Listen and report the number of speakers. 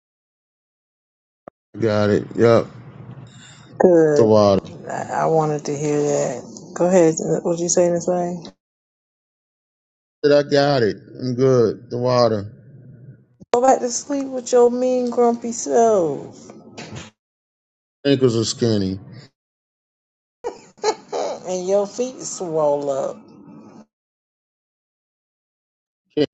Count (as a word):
two